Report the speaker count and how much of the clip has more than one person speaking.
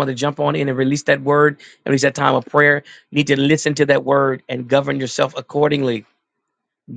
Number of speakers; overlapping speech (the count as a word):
one, no overlap